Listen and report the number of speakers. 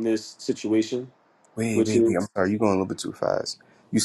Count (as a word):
two